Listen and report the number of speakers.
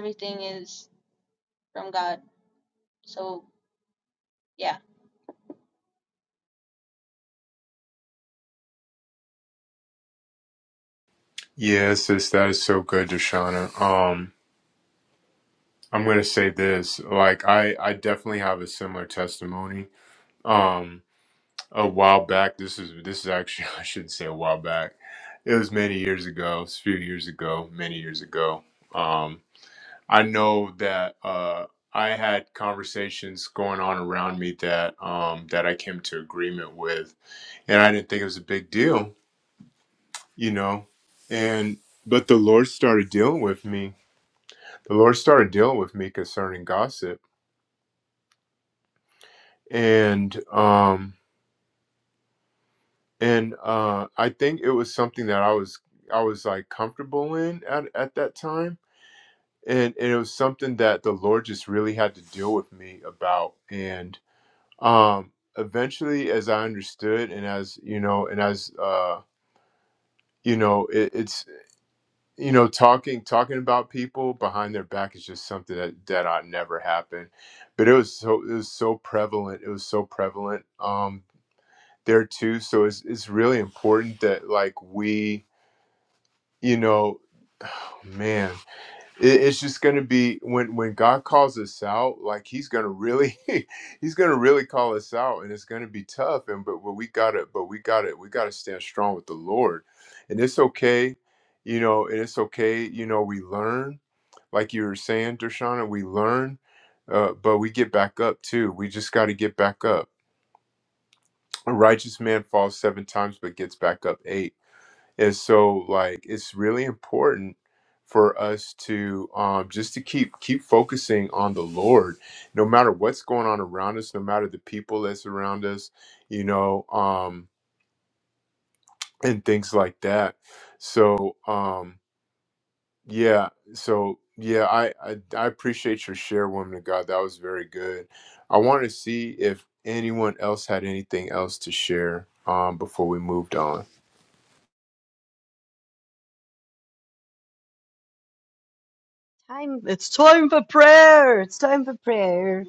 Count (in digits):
3